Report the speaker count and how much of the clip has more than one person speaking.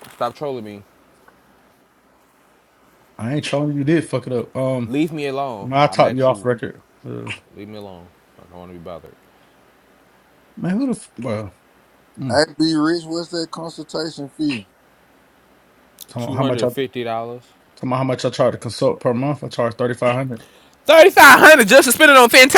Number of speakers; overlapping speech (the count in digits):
3, about 6%